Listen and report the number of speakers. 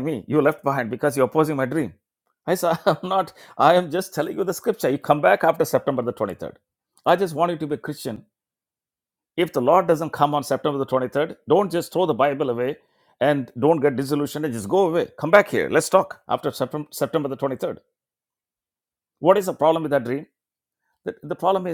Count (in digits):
1